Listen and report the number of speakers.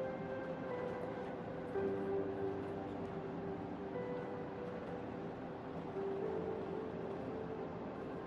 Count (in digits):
0